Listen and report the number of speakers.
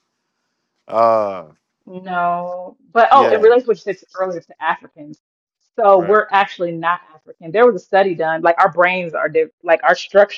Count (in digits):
2